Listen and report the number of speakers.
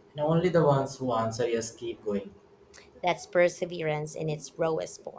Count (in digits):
2